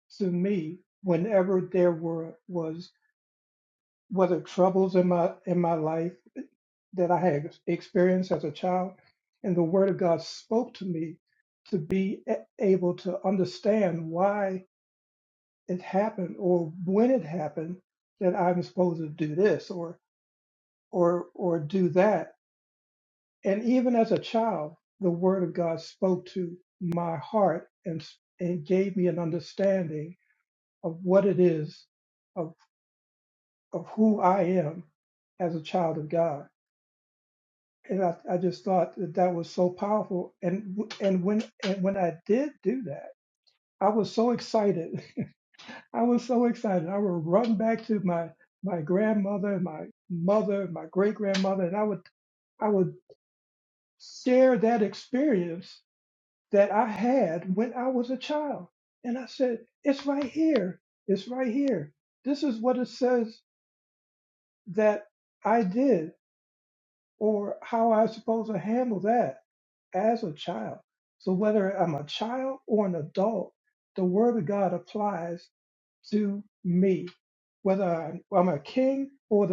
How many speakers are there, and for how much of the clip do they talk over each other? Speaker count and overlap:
one, no overlap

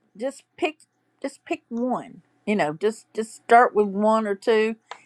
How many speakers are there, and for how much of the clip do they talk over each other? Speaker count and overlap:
one, no overlap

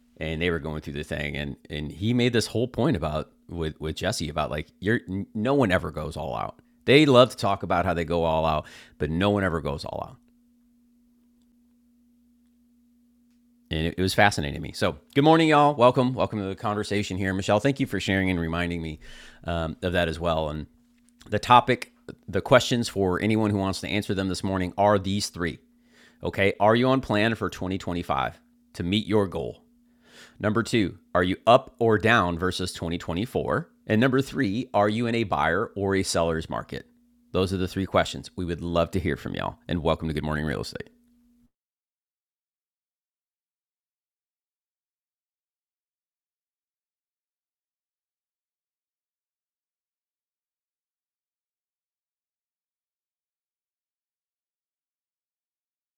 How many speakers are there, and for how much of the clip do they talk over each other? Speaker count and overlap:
one, no overlap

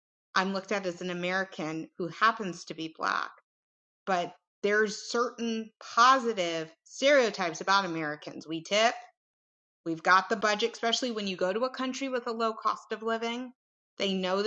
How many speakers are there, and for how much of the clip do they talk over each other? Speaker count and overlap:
one, no overlap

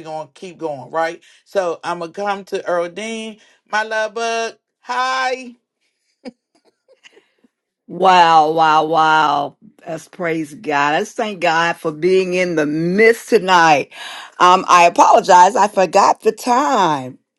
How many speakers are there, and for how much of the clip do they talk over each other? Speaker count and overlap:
two, no overlap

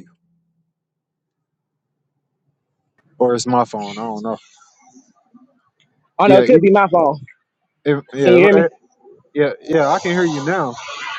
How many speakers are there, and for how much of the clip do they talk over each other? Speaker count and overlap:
two, about 8%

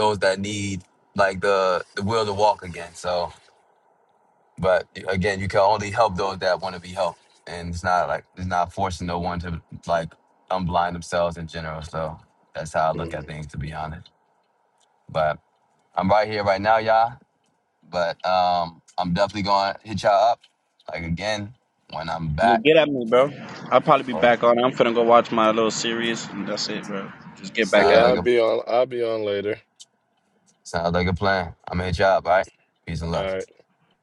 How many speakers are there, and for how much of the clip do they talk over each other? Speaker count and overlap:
three, about 4%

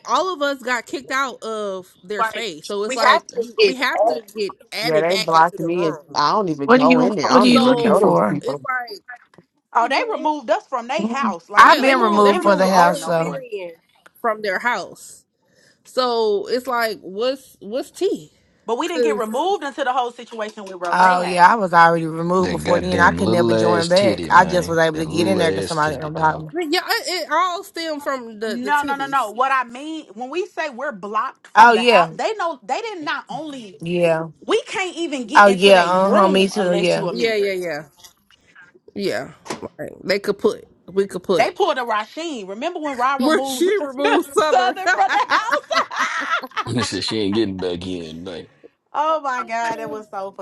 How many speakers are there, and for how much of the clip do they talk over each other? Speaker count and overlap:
five, about 31%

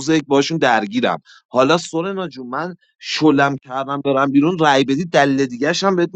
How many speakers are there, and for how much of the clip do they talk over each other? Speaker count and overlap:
one, no overlap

